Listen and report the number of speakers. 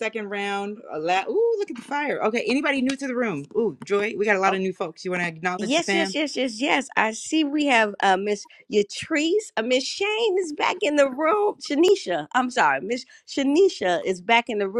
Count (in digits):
2